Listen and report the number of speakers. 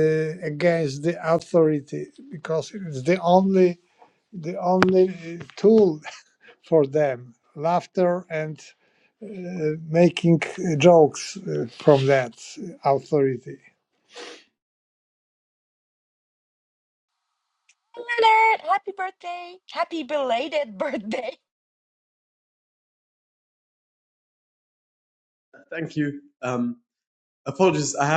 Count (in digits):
3